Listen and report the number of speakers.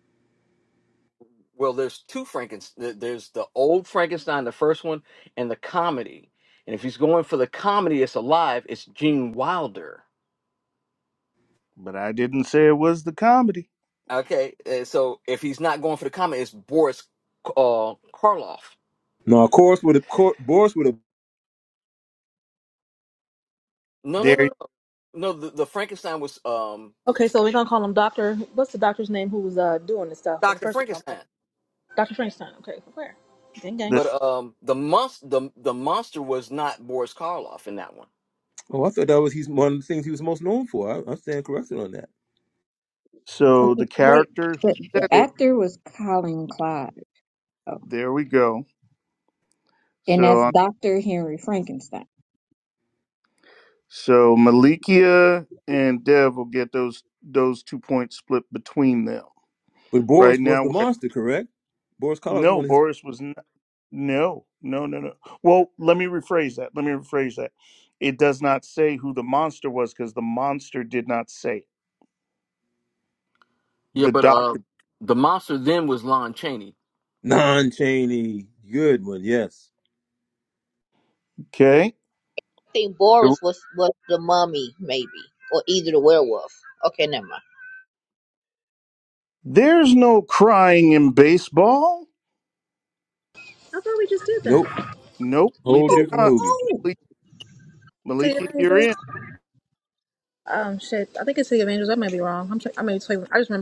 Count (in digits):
6